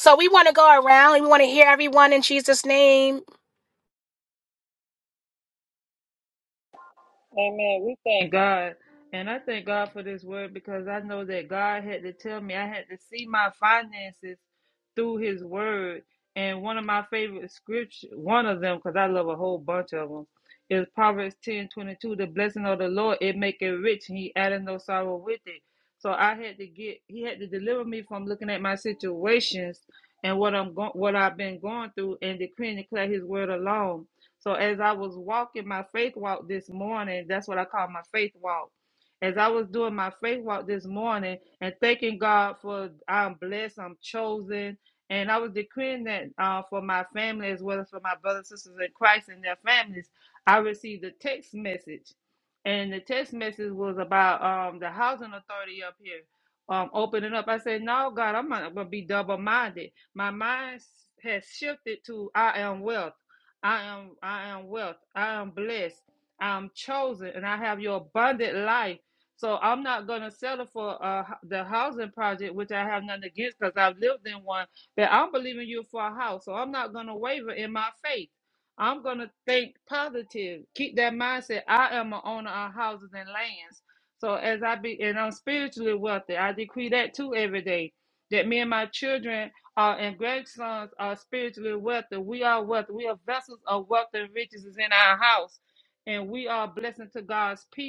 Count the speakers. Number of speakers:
2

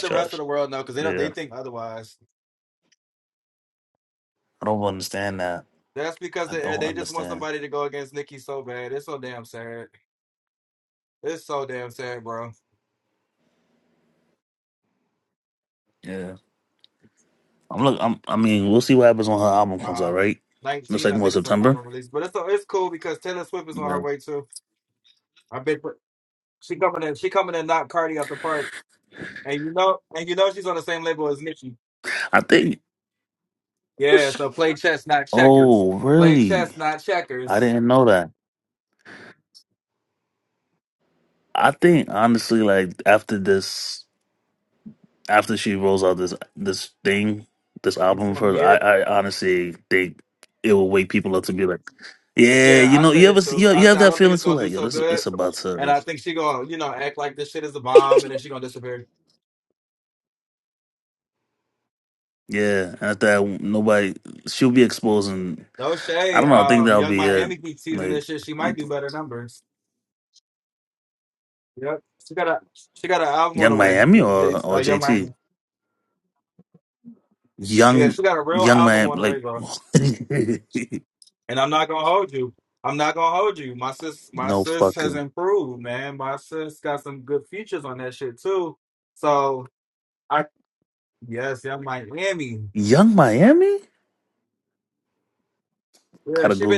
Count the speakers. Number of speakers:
2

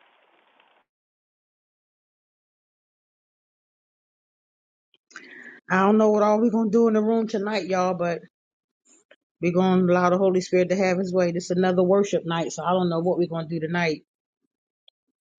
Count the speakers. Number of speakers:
1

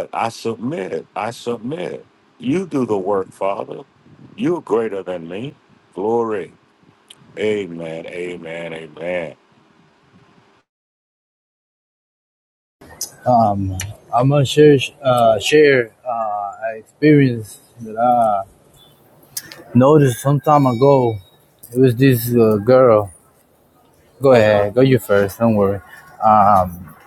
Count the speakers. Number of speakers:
2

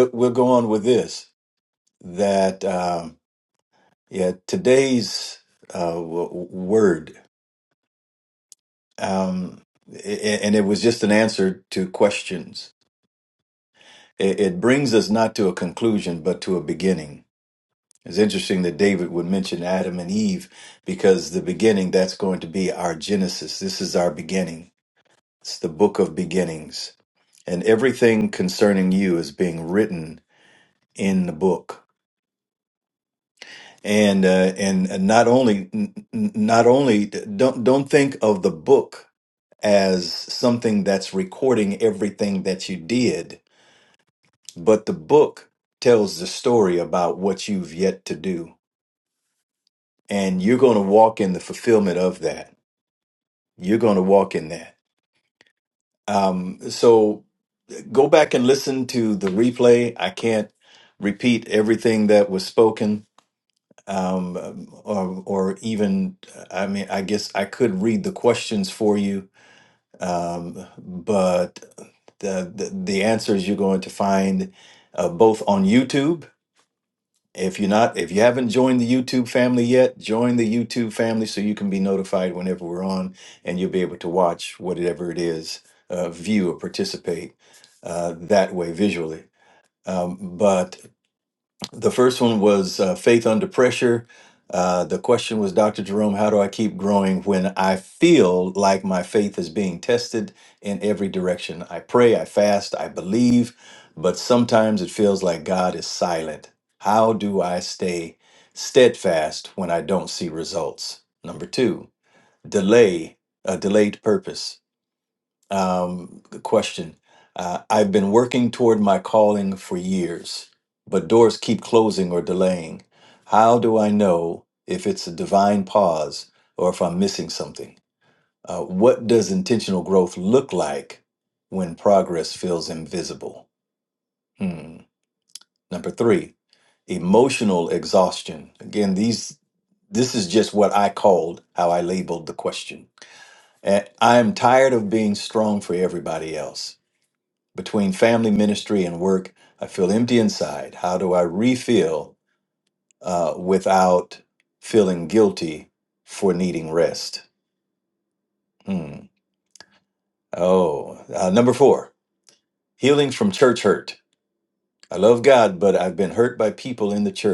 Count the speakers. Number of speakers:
1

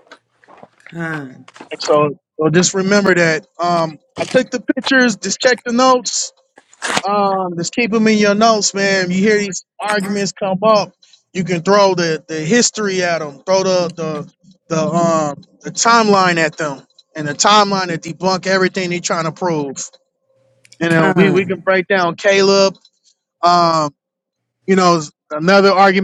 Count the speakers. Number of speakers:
2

